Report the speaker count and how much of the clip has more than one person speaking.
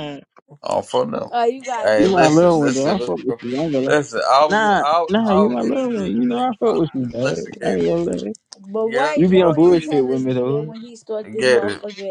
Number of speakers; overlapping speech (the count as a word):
three, about 56%